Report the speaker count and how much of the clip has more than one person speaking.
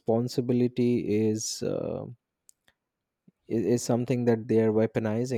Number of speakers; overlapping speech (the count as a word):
one, no overlap